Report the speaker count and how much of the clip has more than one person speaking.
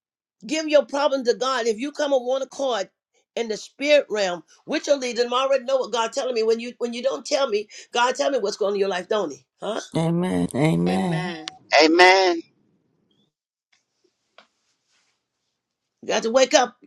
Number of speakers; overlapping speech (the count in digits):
3, about 1%